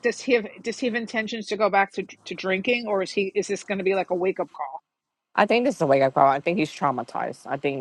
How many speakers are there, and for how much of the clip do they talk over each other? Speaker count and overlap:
2, no overlap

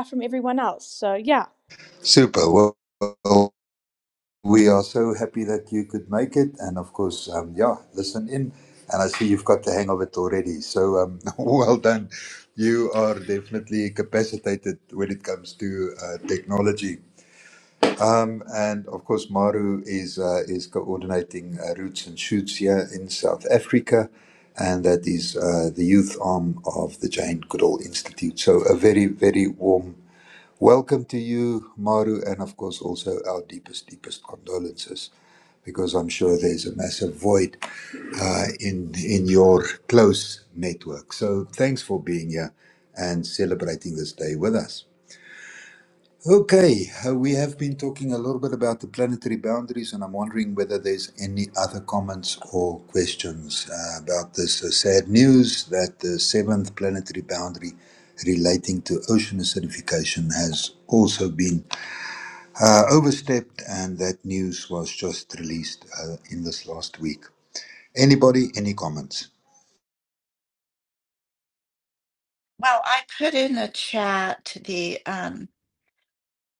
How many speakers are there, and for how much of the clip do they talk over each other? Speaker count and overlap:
3, no overlap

